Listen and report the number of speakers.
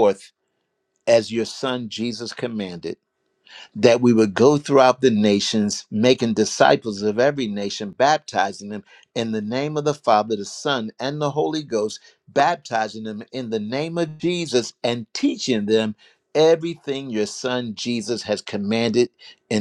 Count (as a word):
one